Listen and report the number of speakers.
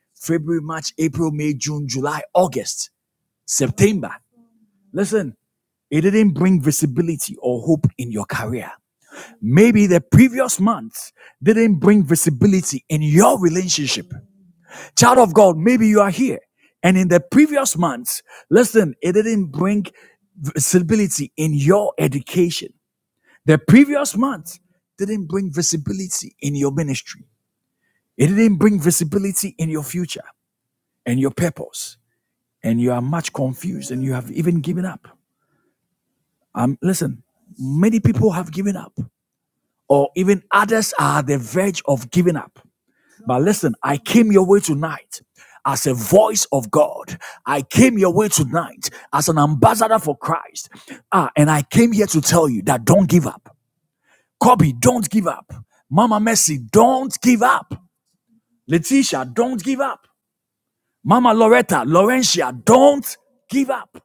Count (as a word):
one